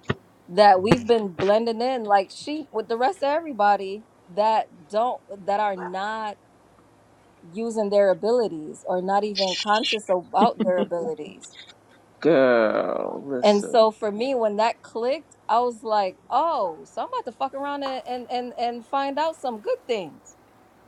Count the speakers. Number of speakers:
two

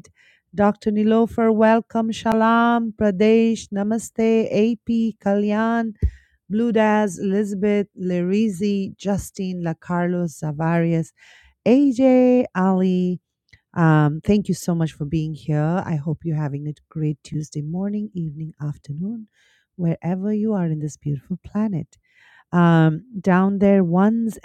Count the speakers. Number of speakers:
one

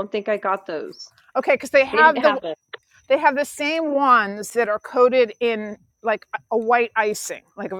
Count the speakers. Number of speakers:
two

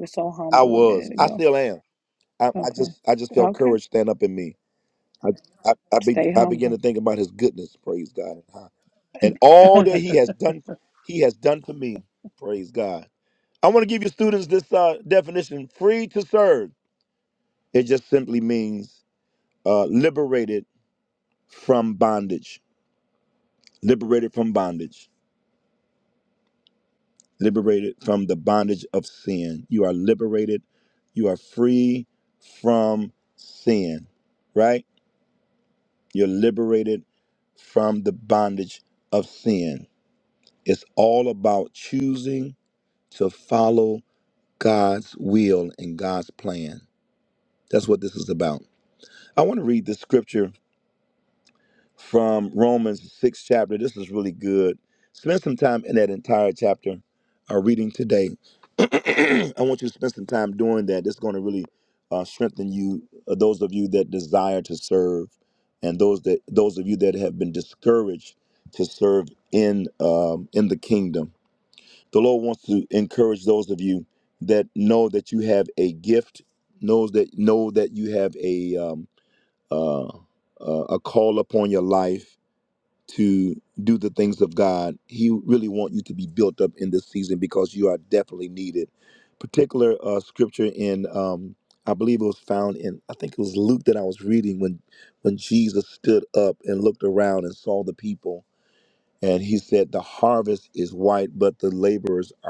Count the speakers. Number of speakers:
two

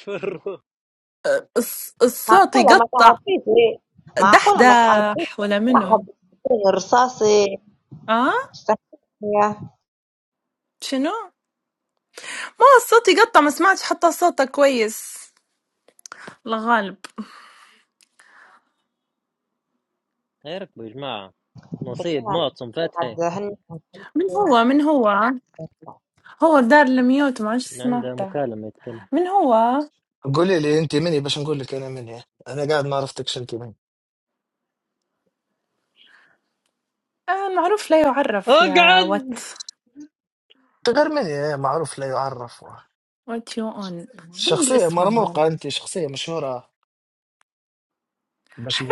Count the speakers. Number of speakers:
four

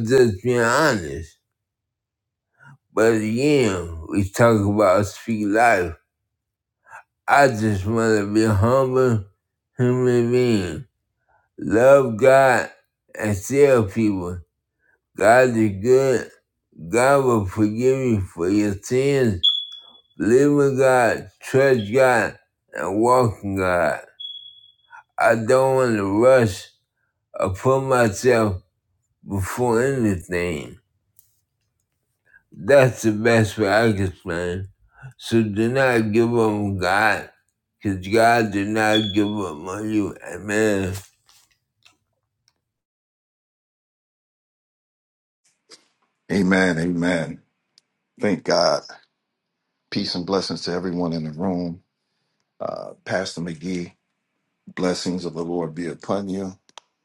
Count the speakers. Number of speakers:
two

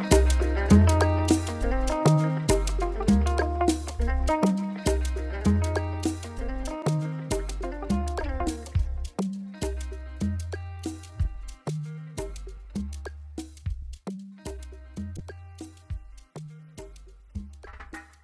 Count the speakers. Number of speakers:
zero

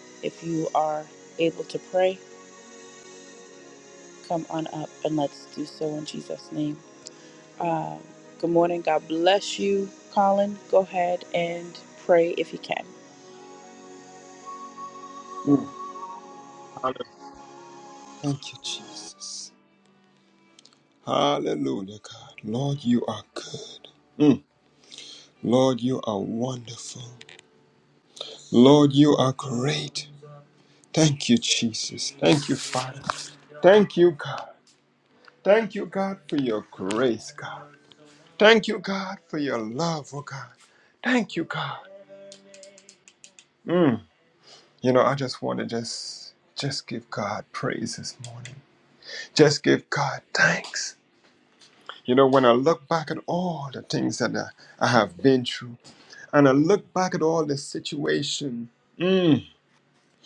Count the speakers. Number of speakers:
two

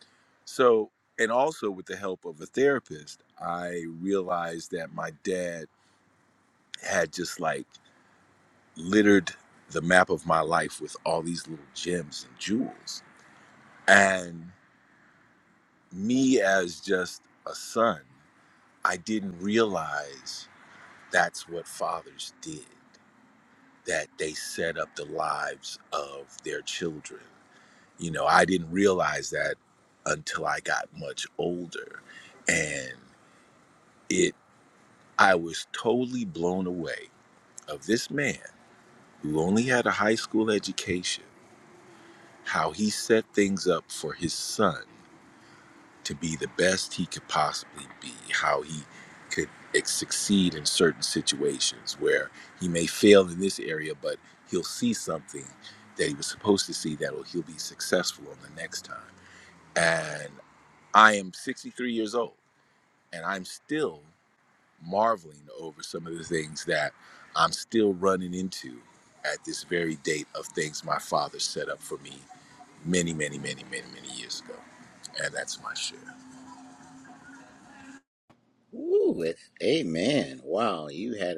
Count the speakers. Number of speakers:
two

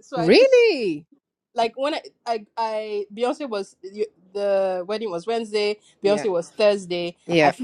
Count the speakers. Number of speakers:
two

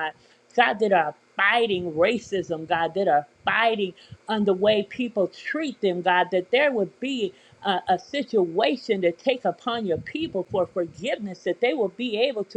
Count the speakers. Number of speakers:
one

